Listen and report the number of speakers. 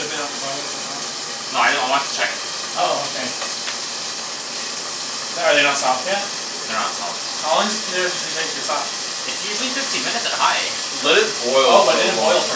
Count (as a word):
three